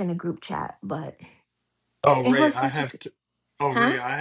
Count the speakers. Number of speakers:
two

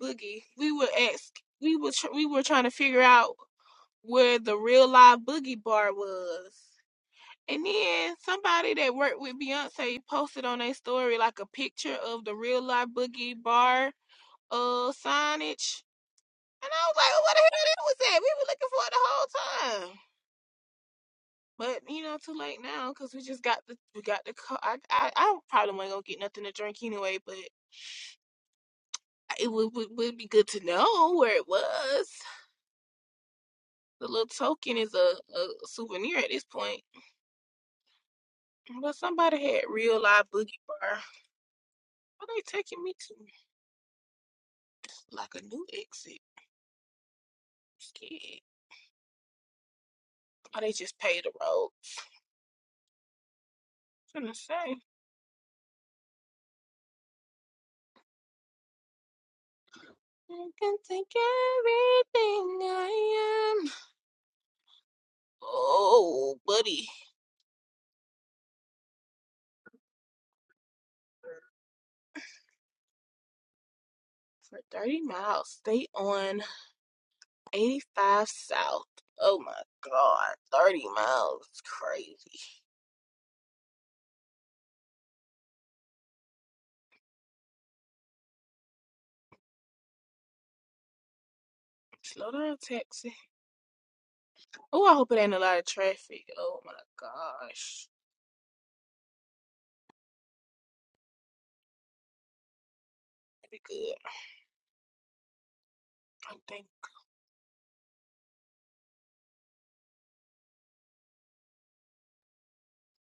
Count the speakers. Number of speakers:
one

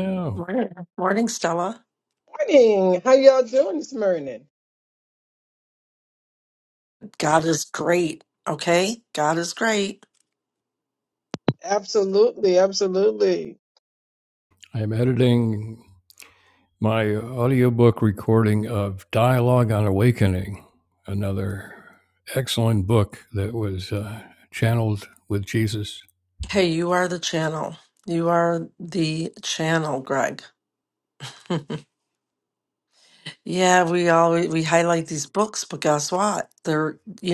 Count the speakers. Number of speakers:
three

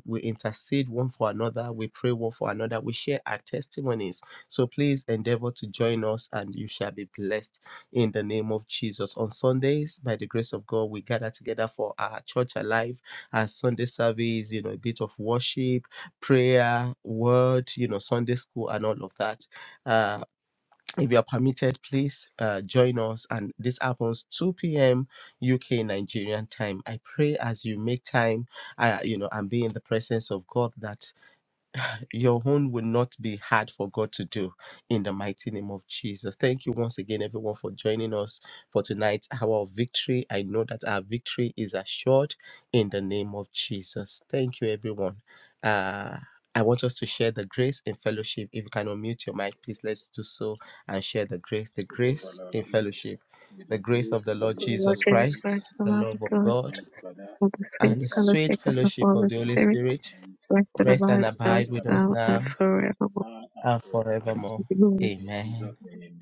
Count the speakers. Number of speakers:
three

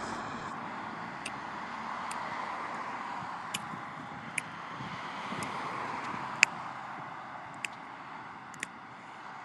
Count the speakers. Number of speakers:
zero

